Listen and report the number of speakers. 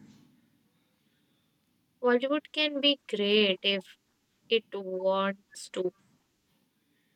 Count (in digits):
1